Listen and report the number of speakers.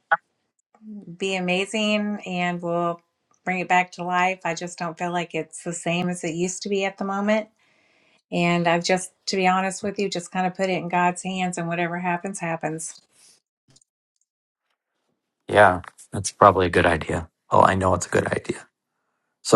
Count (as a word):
two